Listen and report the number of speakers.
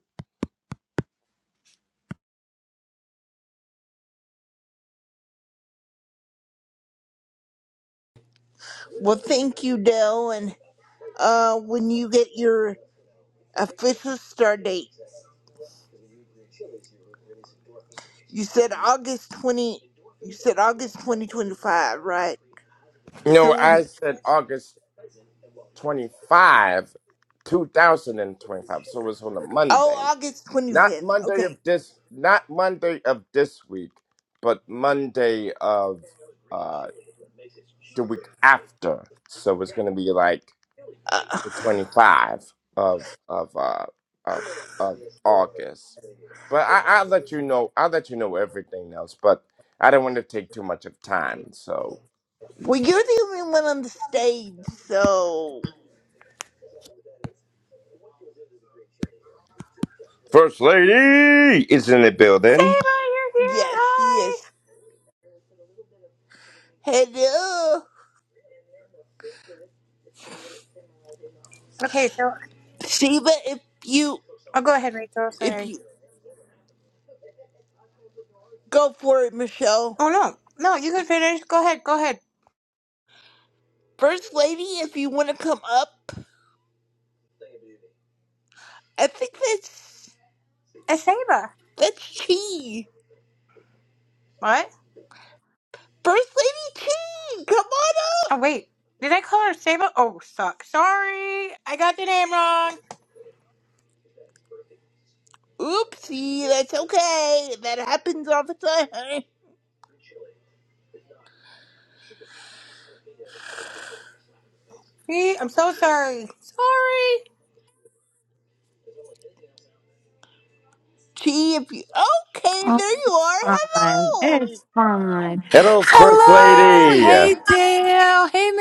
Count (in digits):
4